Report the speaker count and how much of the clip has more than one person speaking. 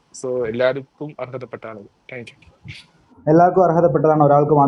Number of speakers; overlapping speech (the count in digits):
2, no overlap